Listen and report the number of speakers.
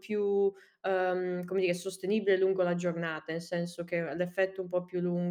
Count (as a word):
one